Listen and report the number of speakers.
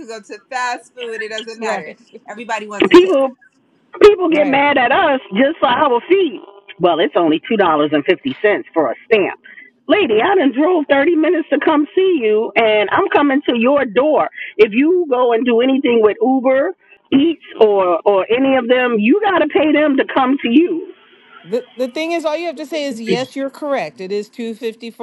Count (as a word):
three